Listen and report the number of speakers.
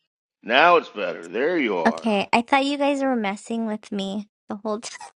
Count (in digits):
2